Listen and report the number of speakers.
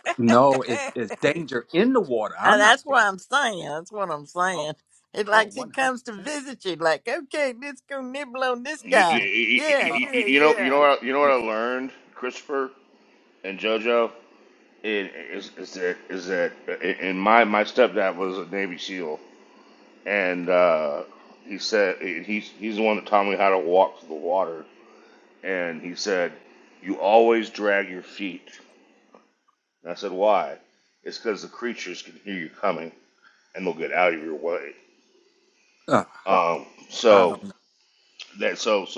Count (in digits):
3